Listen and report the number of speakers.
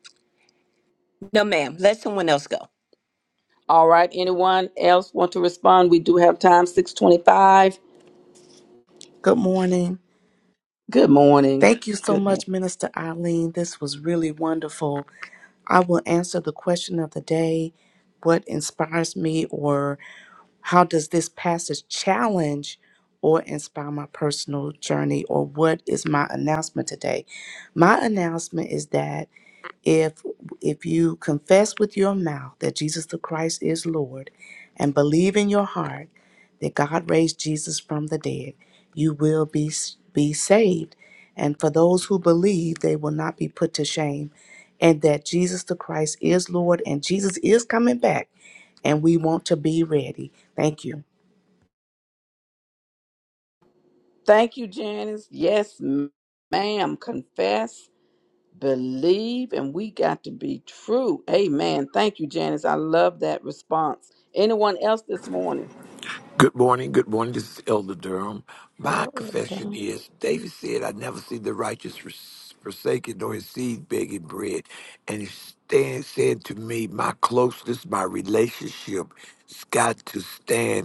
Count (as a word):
four